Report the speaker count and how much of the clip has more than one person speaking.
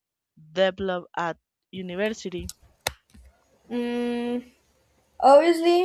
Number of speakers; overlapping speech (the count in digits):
2, no overlap